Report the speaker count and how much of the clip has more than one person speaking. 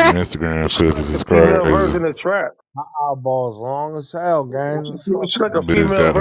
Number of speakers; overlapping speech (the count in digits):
3, about 43%